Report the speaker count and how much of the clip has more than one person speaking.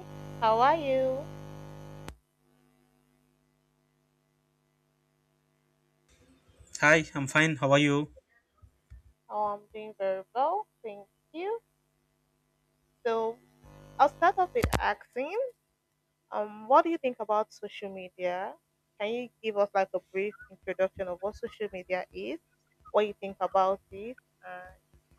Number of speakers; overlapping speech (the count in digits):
2, no overlap